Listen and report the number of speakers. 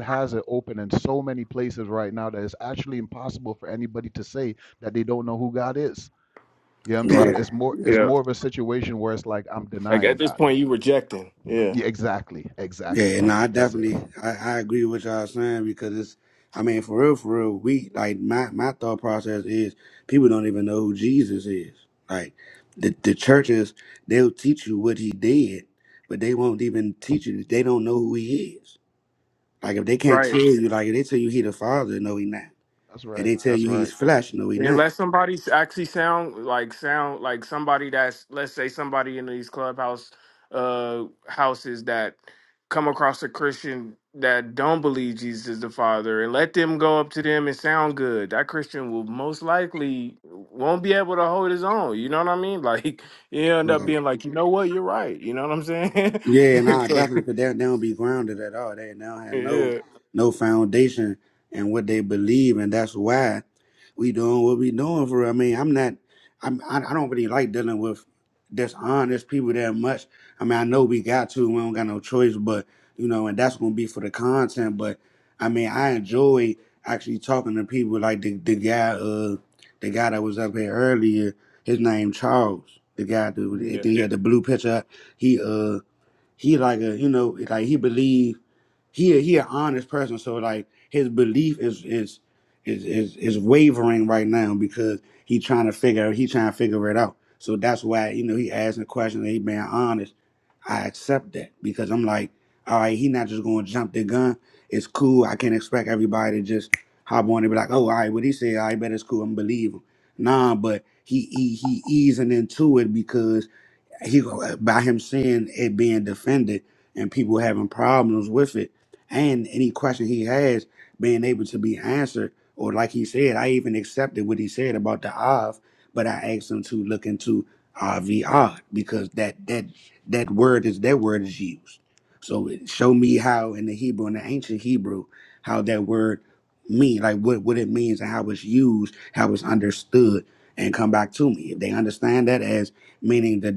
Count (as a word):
three